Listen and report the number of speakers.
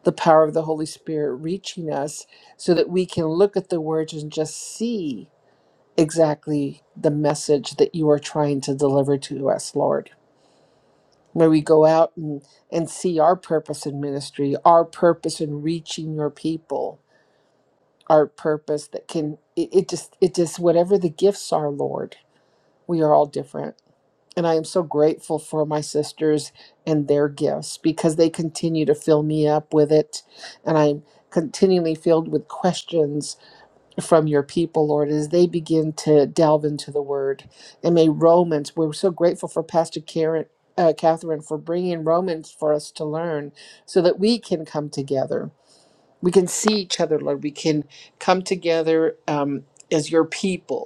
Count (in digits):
1